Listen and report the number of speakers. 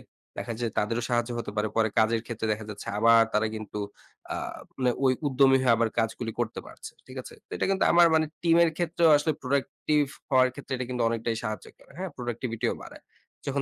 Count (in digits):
1